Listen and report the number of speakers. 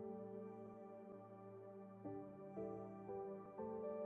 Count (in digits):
0